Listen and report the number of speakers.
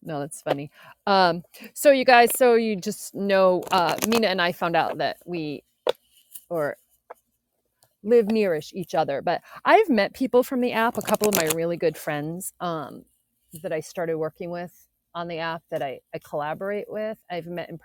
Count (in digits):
1